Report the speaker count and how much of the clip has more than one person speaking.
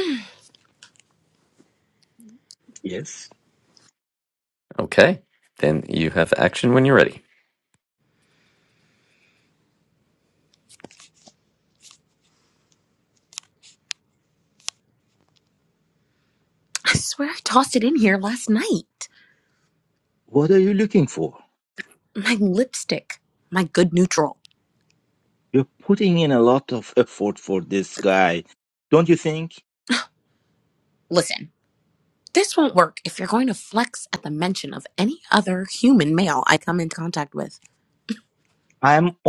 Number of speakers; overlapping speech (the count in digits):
3, no overlap